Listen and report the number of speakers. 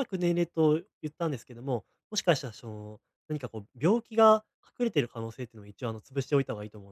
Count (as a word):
one